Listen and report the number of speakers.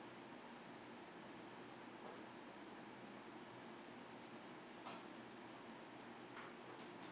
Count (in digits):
0